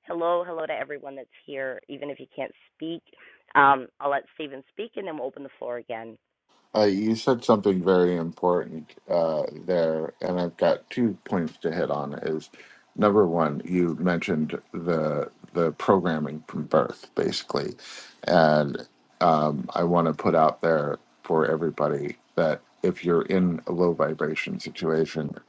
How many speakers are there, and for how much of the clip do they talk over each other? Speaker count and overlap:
2, no overlap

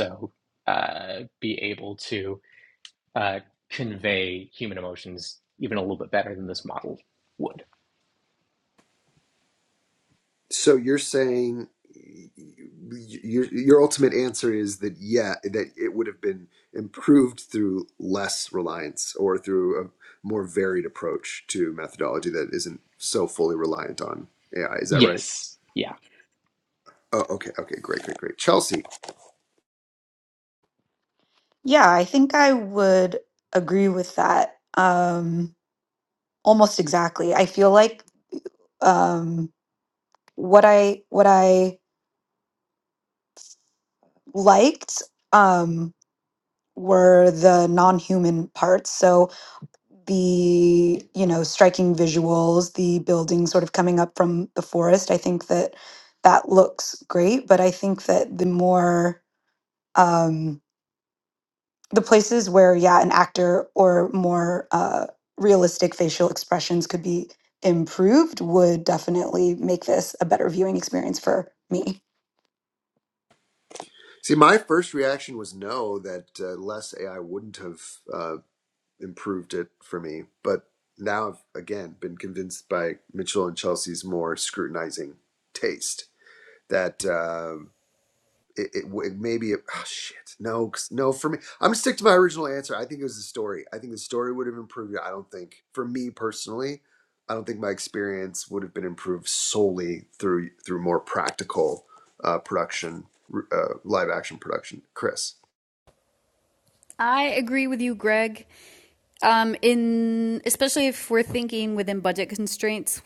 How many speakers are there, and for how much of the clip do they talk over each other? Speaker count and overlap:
4, under 1%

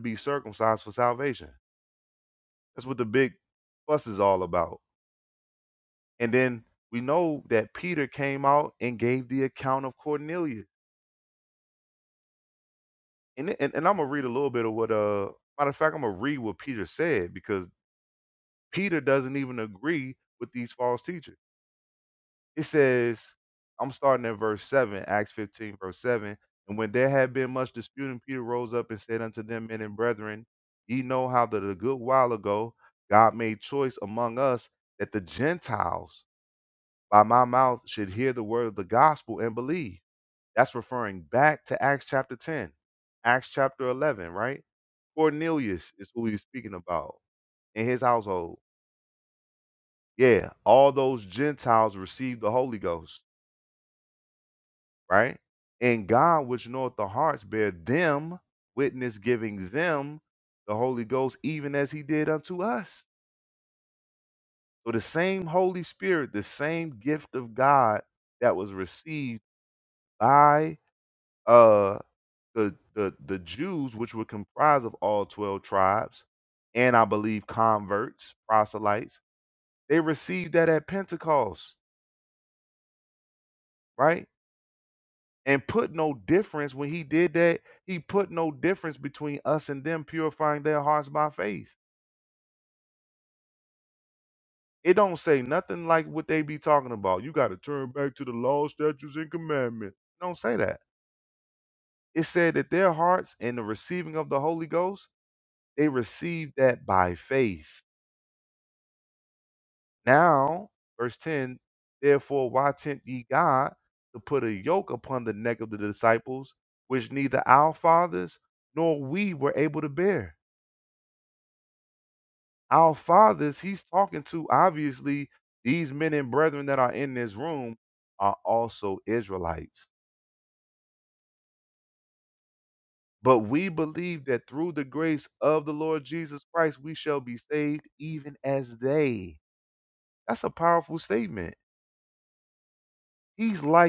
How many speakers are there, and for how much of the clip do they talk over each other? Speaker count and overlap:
1, no overlap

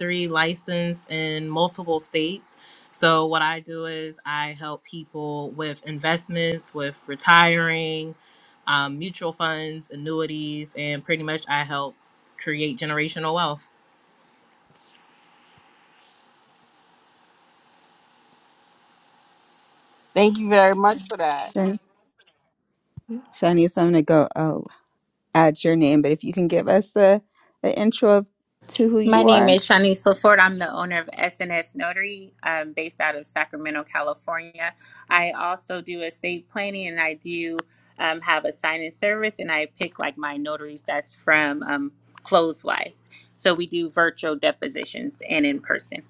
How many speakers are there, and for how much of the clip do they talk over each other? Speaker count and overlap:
4, about 1%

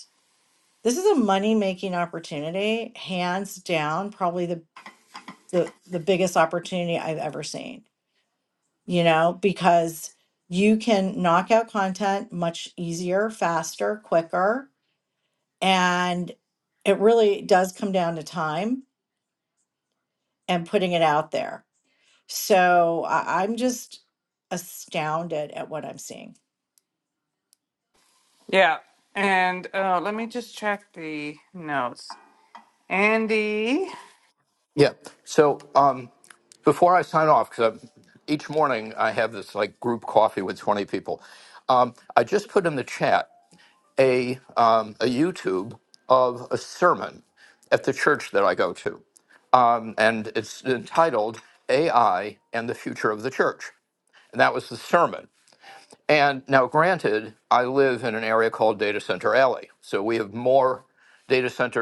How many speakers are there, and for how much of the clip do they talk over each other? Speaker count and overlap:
3, no overlap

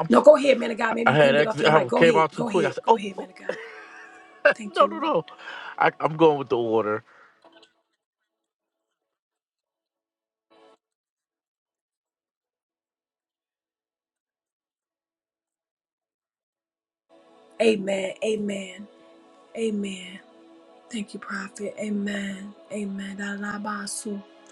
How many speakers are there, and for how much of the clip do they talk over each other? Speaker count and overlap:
2, about 11%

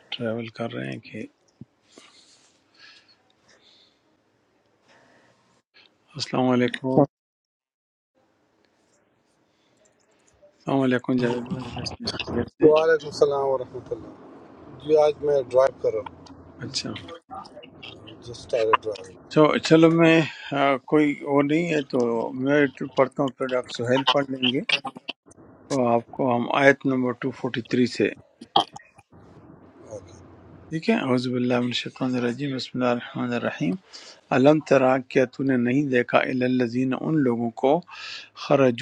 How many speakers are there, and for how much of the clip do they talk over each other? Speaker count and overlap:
2, under 1%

